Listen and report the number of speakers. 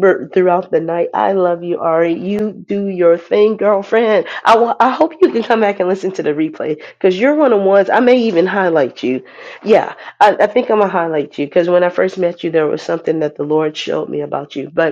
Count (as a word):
one